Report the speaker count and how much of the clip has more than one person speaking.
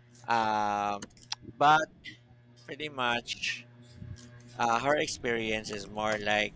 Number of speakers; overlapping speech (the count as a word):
one, no overlap